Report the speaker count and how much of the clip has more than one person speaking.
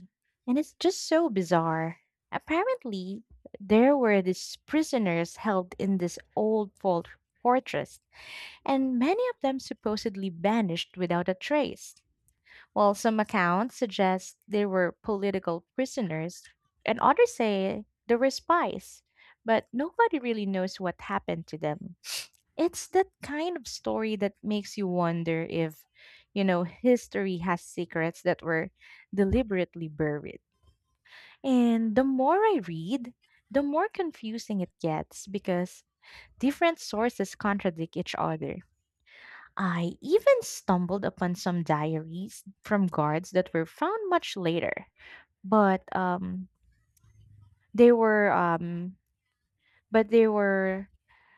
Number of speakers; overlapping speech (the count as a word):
one, no overlap